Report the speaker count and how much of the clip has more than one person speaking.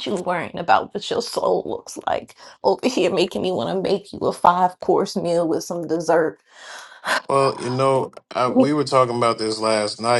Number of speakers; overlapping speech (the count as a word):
two, no overlap